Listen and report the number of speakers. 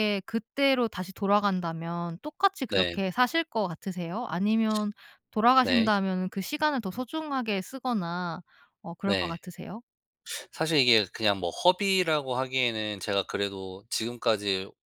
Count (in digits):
2